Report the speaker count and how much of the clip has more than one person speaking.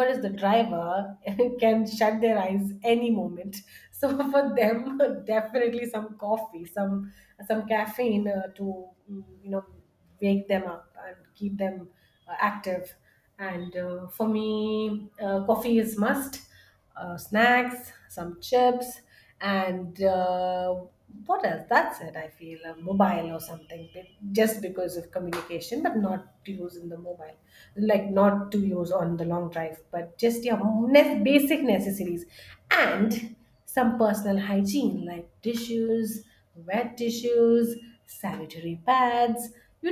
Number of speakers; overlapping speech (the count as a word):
one, no overlap